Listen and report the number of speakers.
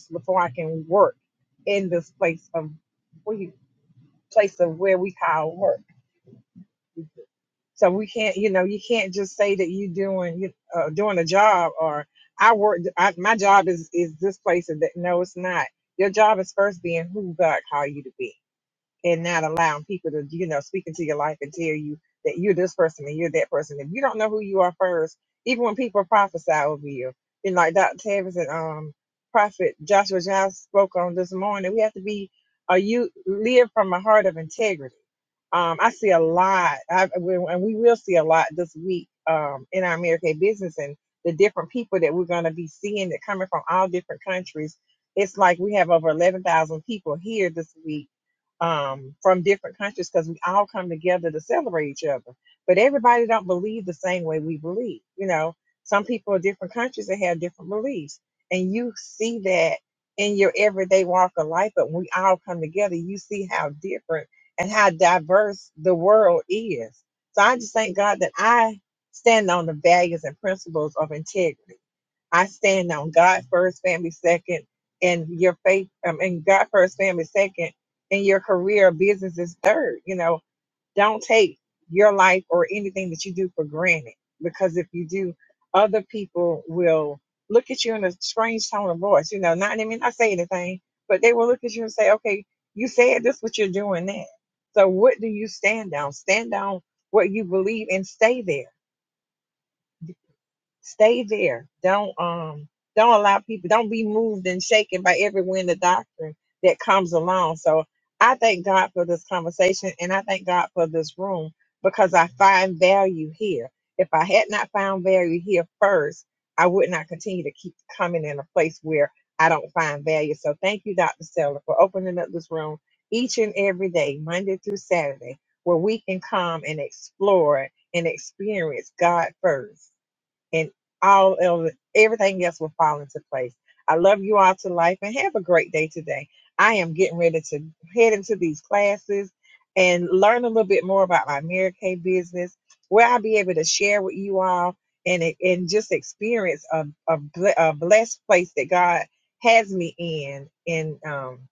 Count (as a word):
one